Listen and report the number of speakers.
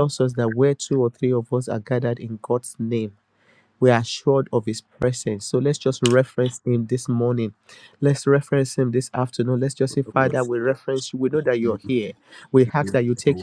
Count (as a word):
one